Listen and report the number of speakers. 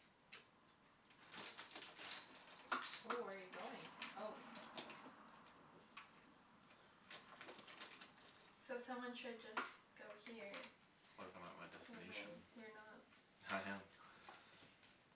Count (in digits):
3